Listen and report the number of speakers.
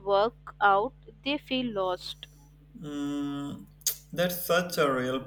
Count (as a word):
two